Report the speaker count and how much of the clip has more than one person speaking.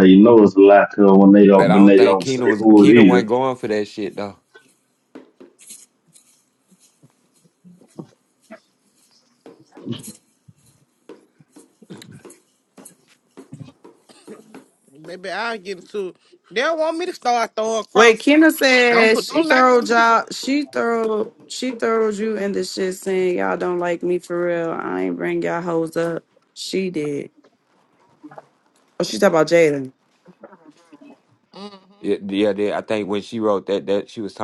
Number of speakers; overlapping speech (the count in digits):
4, about 9%